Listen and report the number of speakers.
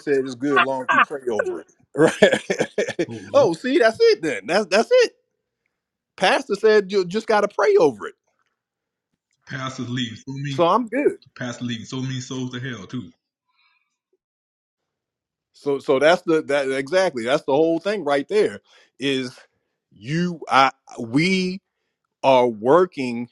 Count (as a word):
two